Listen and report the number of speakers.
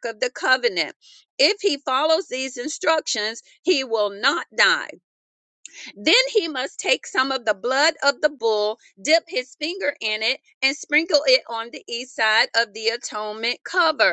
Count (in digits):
1